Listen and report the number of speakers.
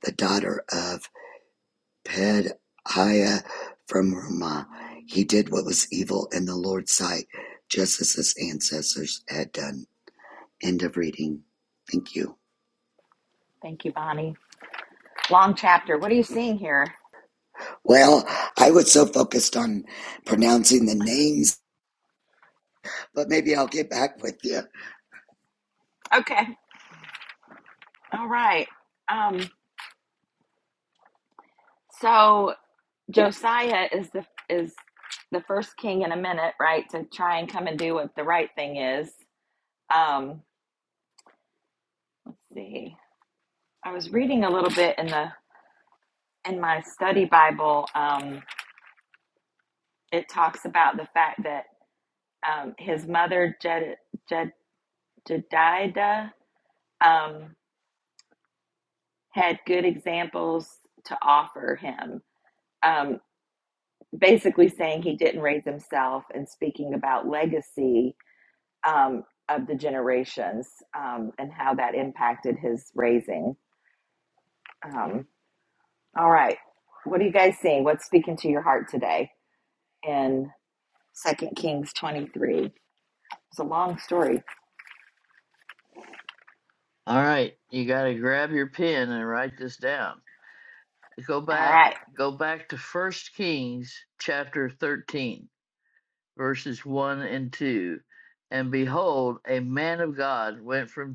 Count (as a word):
three